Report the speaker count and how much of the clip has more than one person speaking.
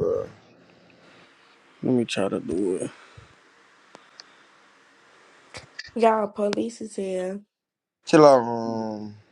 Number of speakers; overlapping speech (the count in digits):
3, no overlap